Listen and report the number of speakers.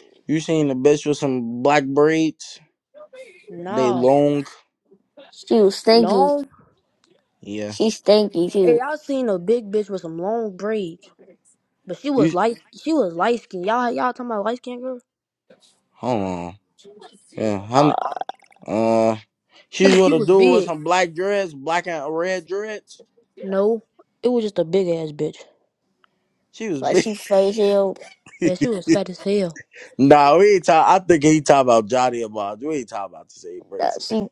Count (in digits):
3